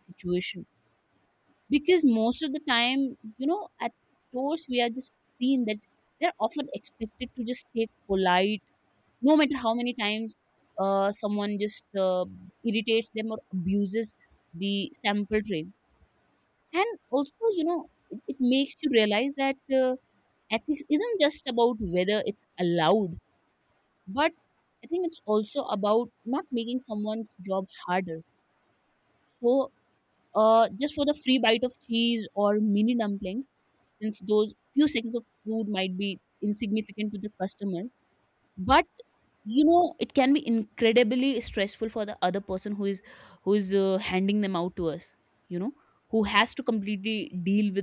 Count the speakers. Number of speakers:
one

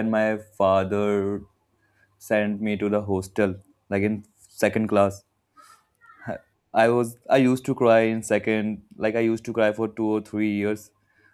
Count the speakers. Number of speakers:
one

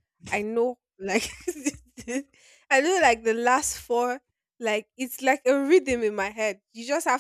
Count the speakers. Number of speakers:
one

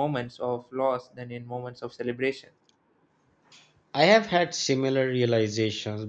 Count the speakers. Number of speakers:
two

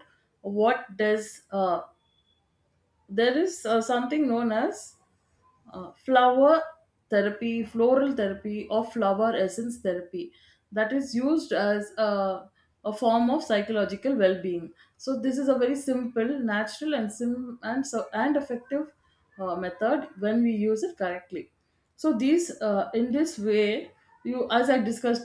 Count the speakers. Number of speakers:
one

